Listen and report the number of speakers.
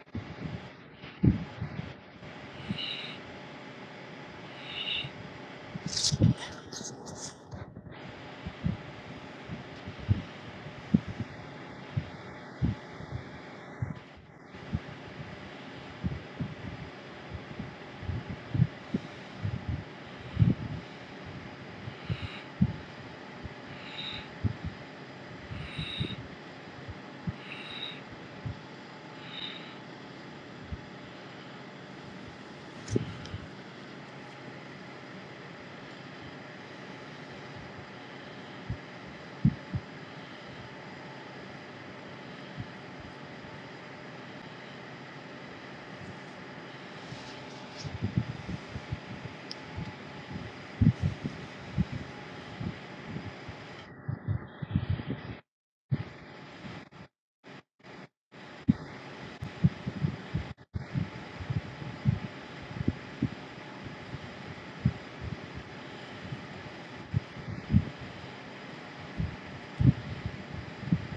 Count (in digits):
0